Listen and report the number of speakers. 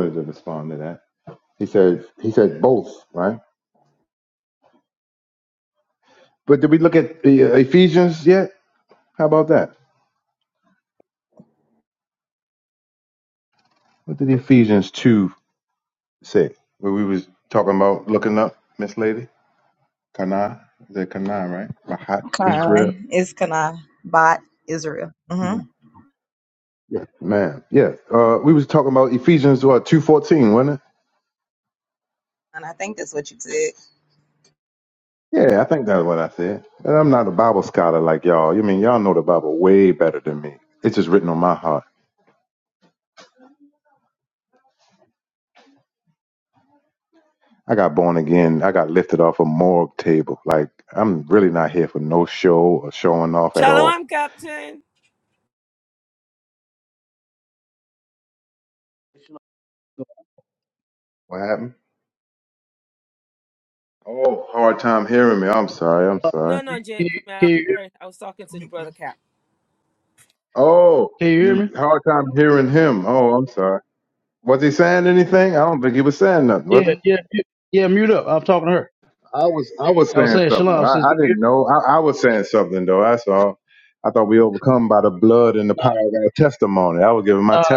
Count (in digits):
4